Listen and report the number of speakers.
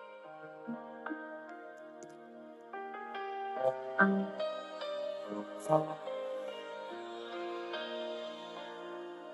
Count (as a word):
zero